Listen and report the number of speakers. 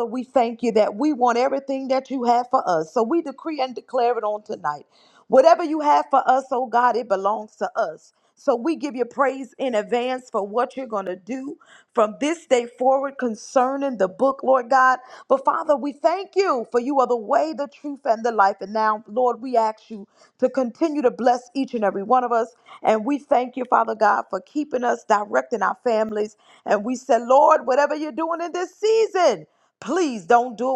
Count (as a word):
one